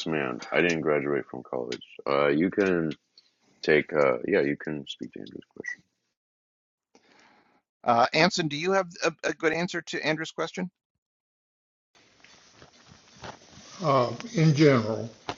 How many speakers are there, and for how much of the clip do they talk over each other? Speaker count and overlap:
three, no overlap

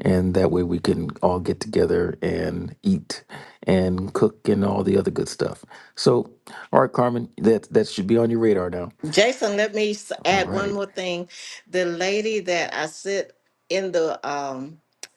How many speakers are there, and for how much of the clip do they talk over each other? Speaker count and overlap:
two, about 4%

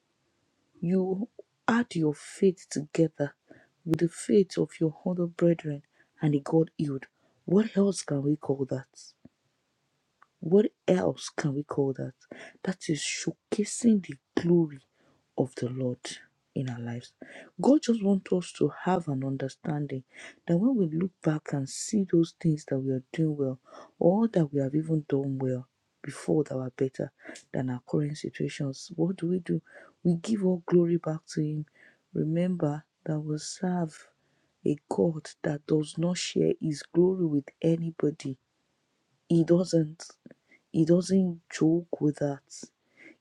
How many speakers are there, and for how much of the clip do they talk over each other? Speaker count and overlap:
one, no overlap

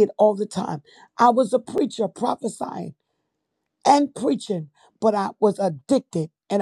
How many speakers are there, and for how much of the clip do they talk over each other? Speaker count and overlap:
one, no overlap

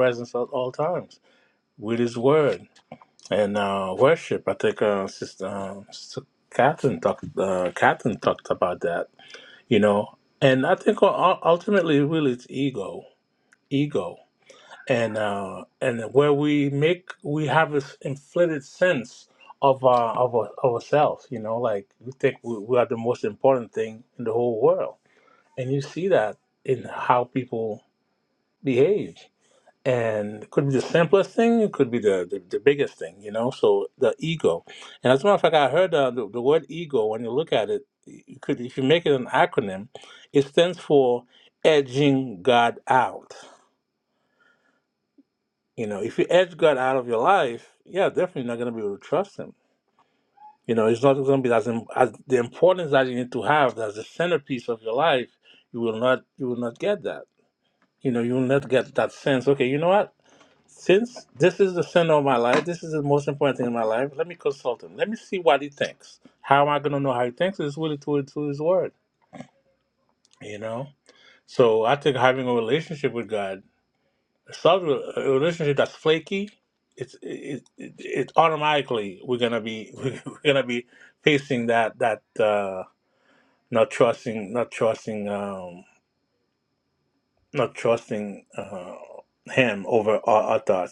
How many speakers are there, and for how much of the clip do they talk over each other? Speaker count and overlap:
one, no overlap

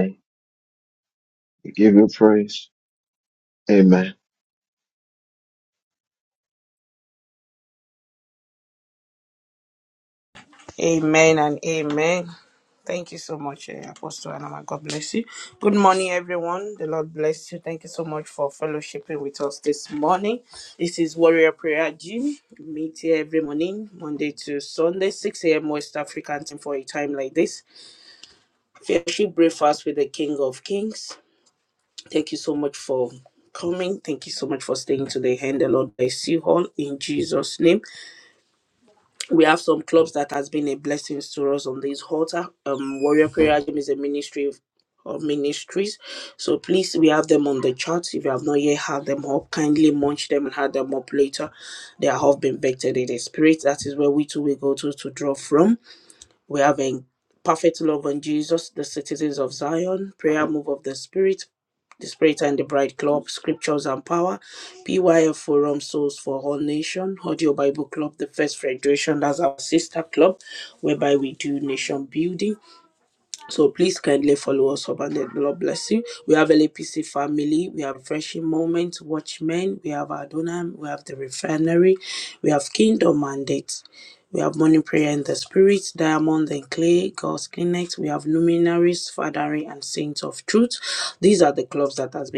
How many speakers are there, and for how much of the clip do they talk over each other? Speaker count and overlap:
two, no overlap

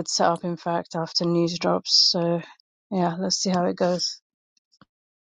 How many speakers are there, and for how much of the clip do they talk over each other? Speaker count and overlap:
one, no overlap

